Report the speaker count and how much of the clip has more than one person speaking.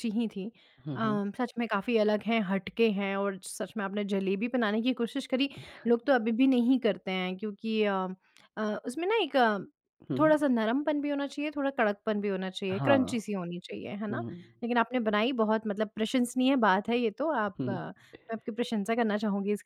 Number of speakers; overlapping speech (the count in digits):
2, about 6%